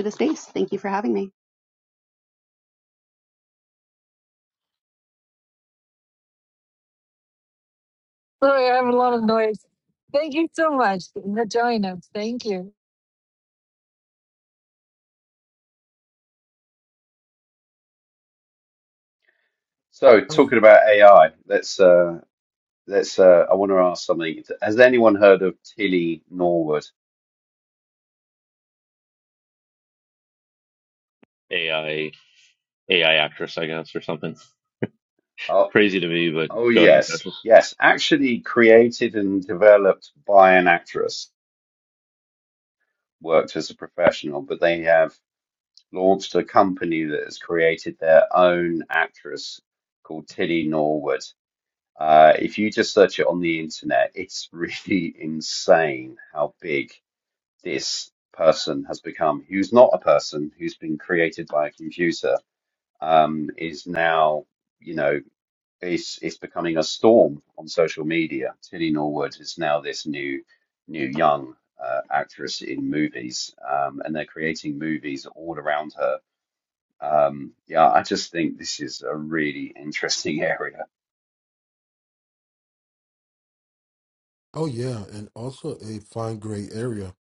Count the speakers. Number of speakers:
5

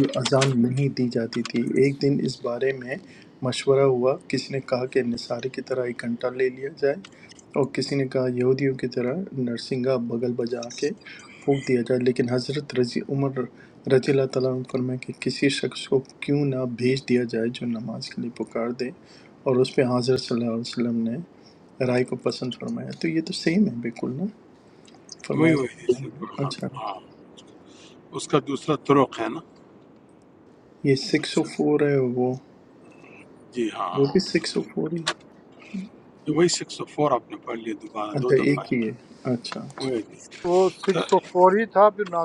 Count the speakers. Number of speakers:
3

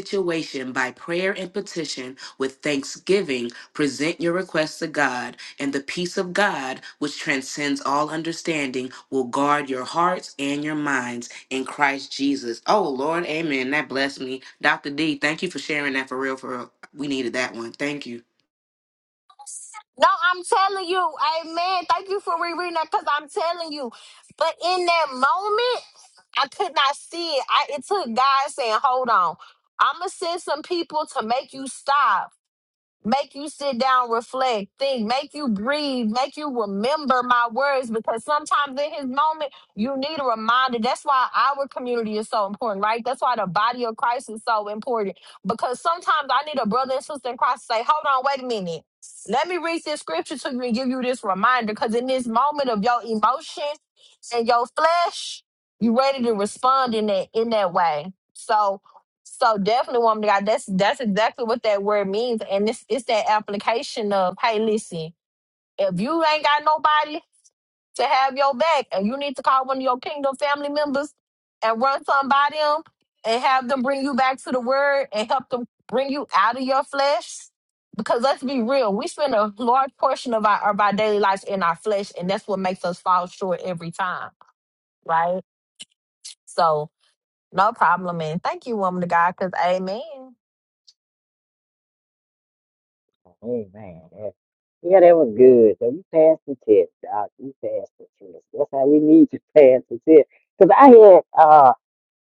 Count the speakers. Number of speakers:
3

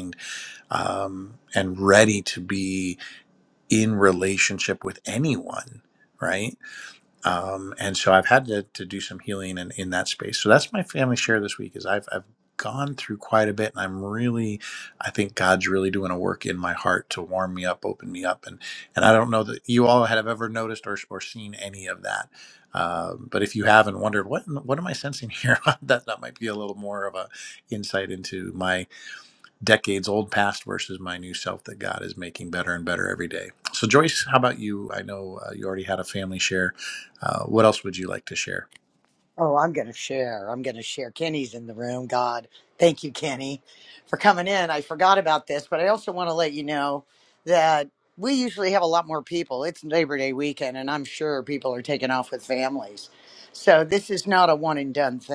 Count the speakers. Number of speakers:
2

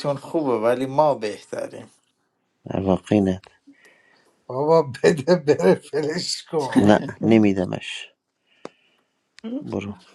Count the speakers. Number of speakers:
3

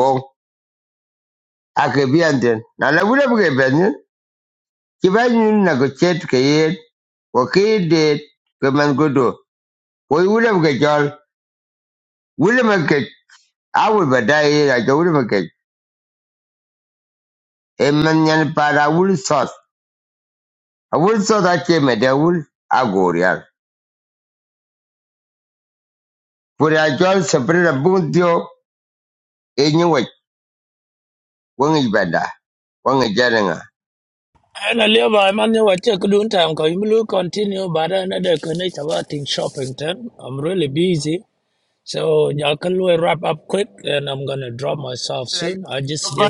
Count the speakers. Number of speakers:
2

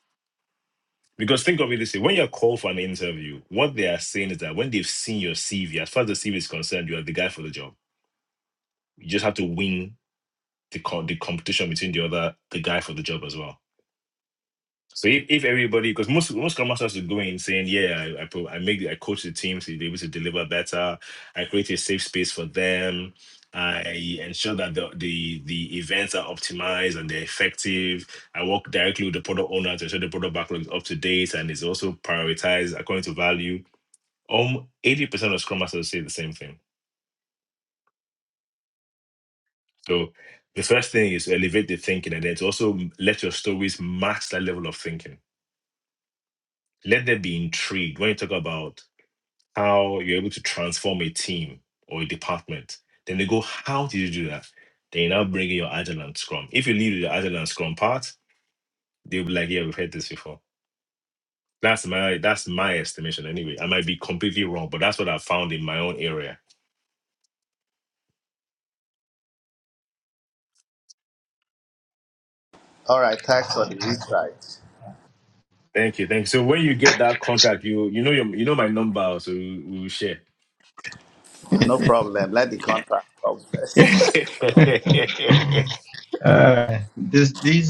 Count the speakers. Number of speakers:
3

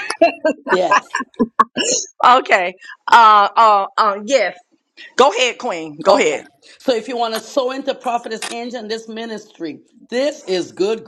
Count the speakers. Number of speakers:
2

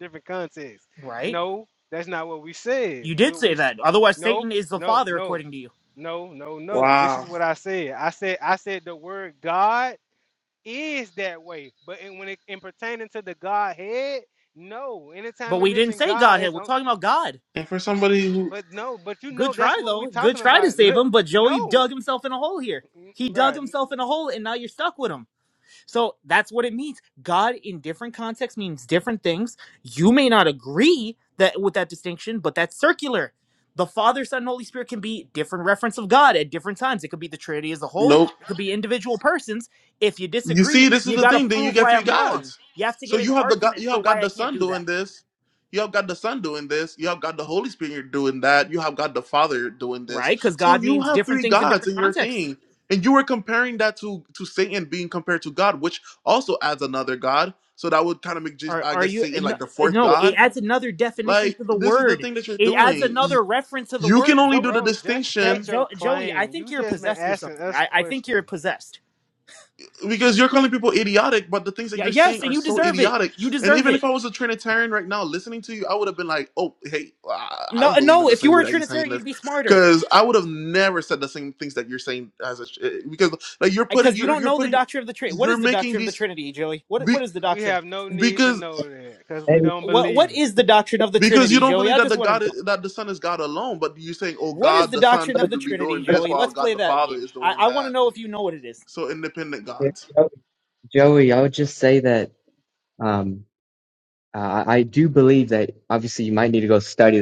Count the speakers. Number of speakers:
4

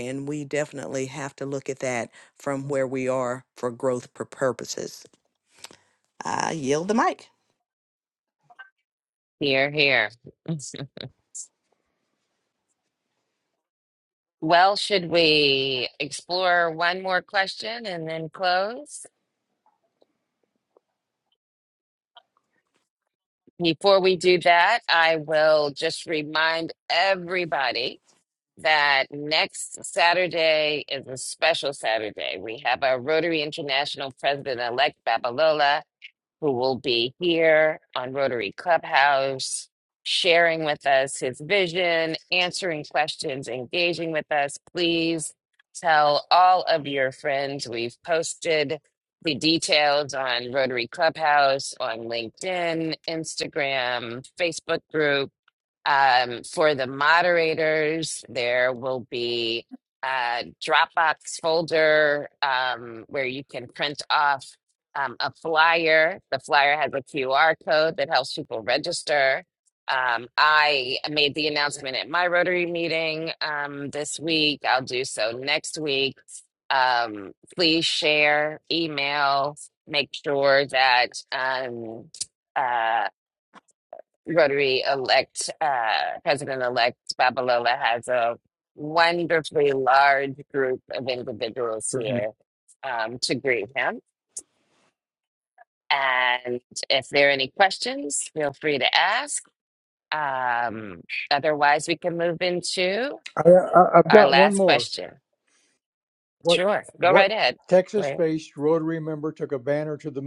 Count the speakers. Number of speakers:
3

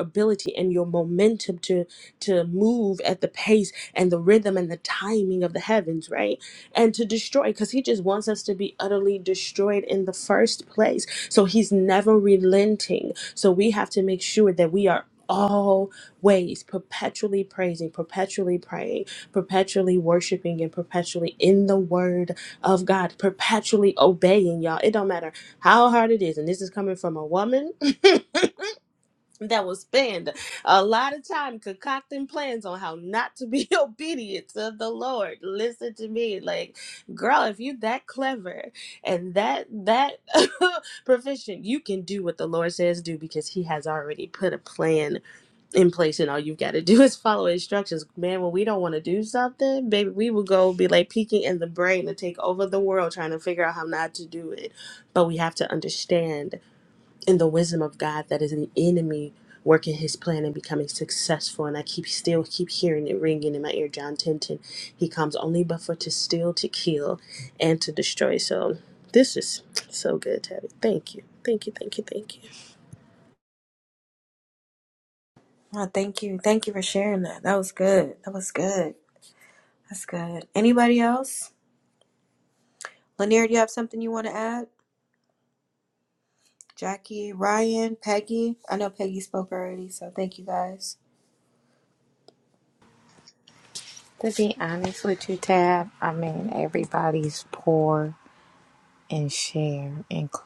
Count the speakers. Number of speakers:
3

